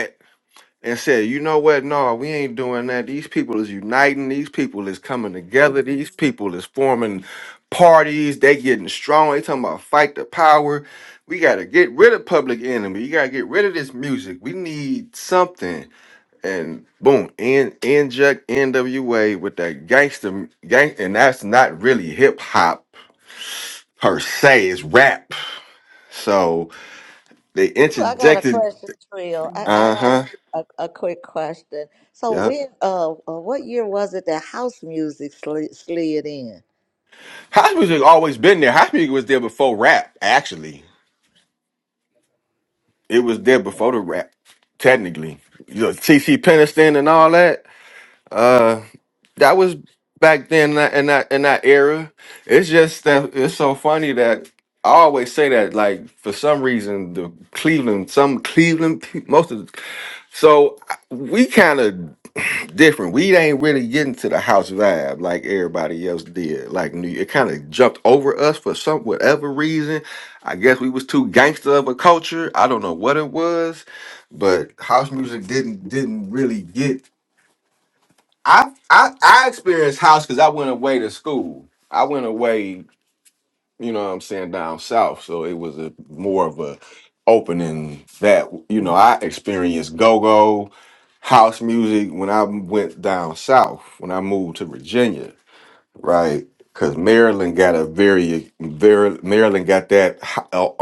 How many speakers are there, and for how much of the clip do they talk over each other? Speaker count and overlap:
two, about 1%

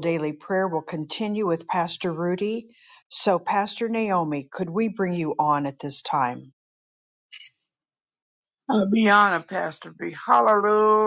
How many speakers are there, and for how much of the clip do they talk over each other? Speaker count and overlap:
two, no overlap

